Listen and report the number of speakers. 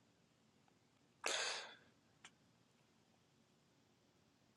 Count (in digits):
0